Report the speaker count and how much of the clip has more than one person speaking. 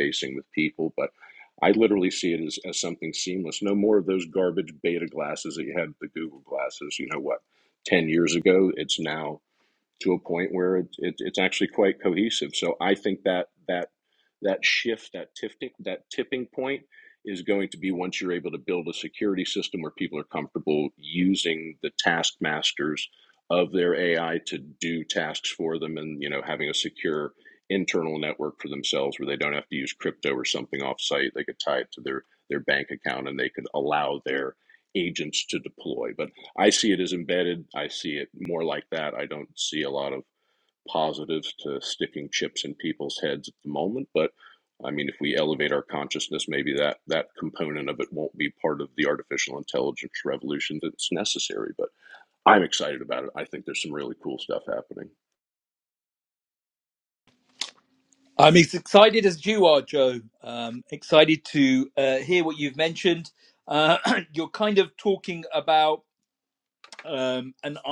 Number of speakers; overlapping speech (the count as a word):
two, no overlap